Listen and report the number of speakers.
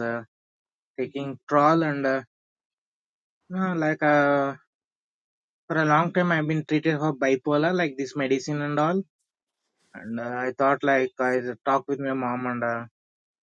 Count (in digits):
1